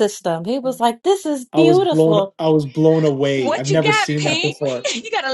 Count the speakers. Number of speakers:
three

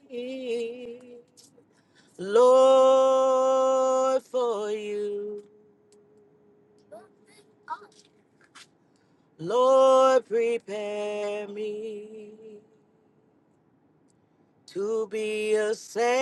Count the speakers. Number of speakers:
one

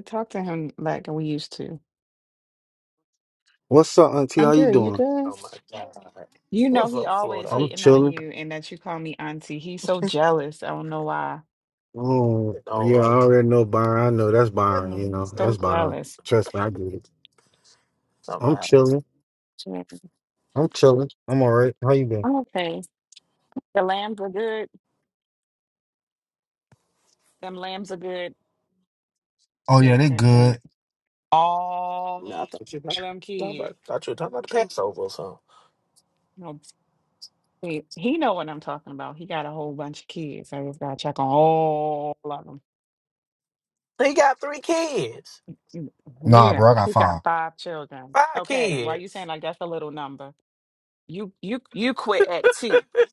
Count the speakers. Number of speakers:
three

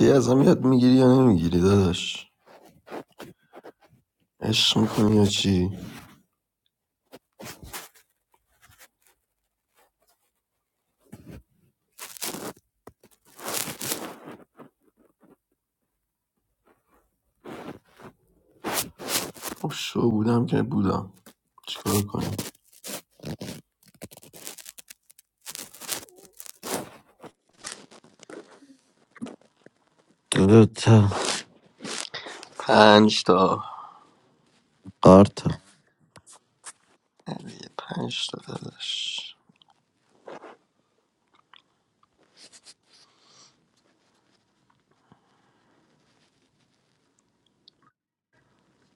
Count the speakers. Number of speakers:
two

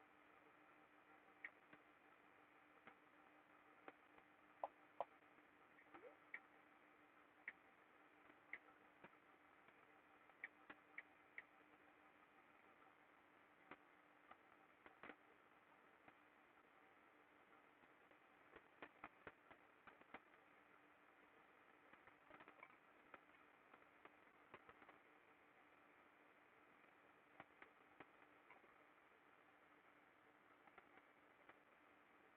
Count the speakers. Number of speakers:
zero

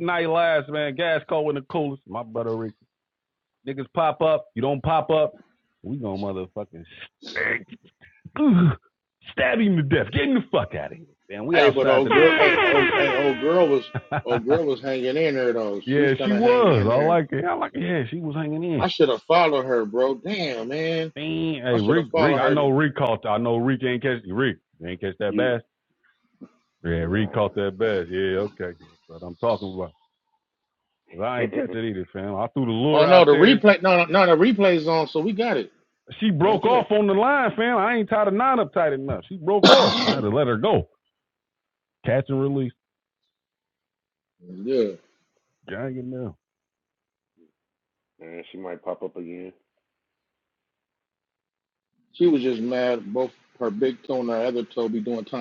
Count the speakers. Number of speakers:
three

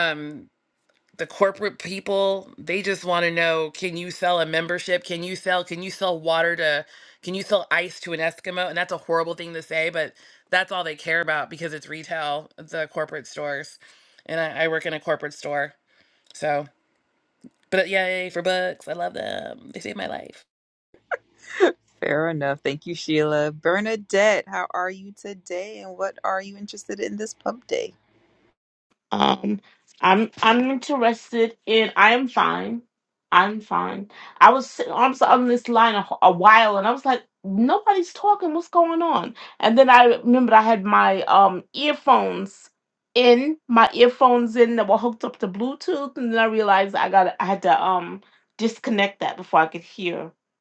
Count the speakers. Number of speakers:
three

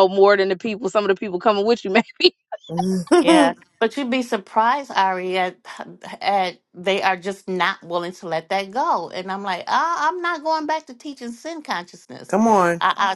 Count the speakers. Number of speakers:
three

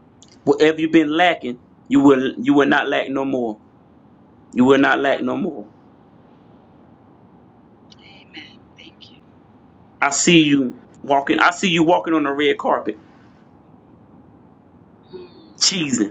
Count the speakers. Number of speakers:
two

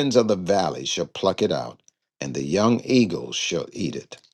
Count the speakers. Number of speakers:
one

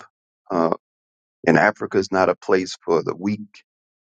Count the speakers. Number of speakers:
one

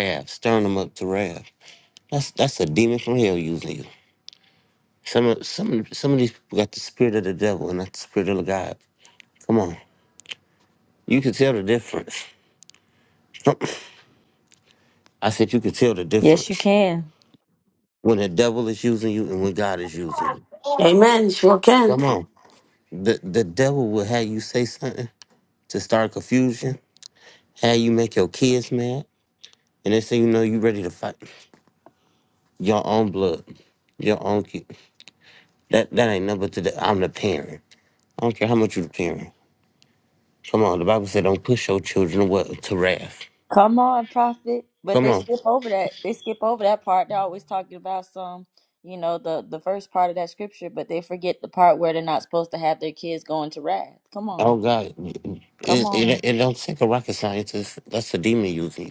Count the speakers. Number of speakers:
three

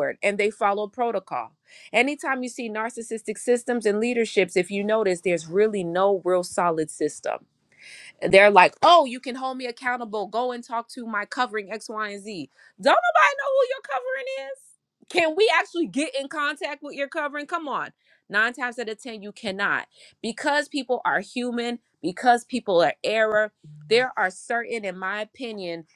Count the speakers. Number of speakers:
one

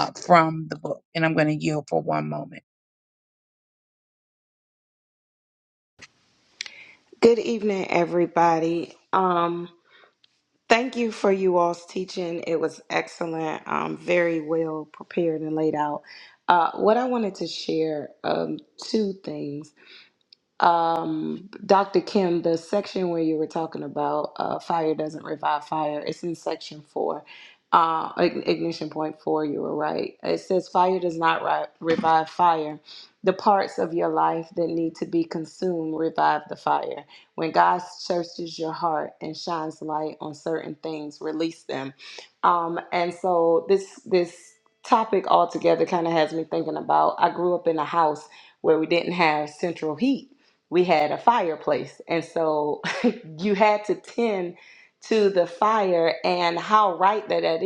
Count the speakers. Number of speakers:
two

